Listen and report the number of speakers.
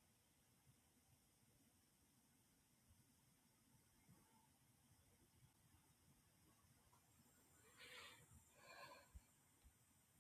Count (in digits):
0